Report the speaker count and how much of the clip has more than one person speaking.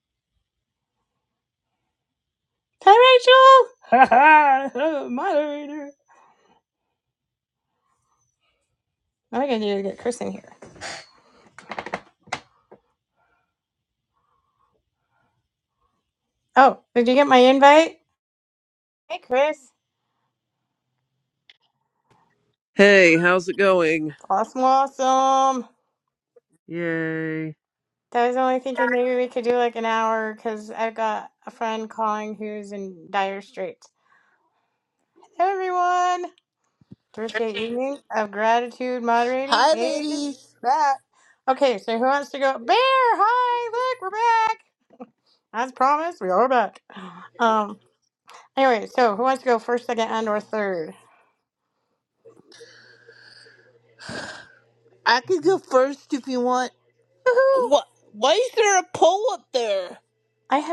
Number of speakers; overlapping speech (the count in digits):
3, about 2%